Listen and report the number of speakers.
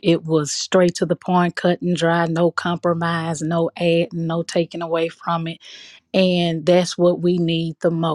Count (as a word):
one